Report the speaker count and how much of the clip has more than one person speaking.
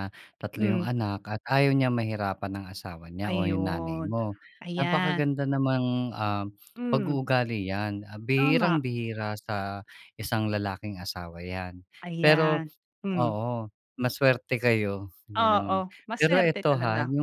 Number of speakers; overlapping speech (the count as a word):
two, about 26%